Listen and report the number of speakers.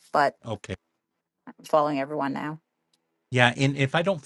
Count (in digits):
2